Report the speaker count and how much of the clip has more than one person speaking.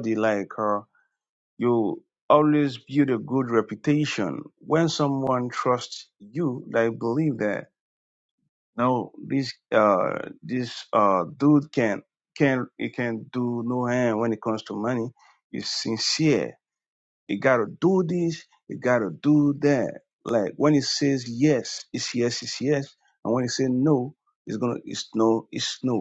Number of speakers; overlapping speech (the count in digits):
1, no overlap